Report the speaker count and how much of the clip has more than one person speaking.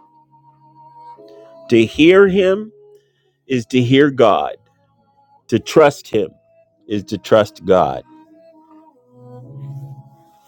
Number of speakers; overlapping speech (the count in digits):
1, no overlap